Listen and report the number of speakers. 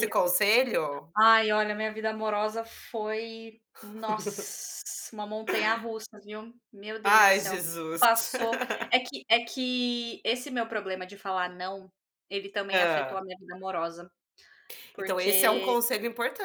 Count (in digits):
2